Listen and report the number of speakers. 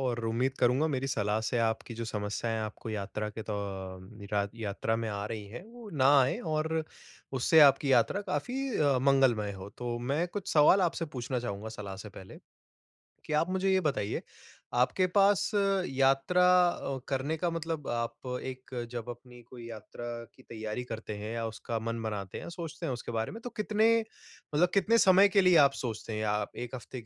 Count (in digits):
1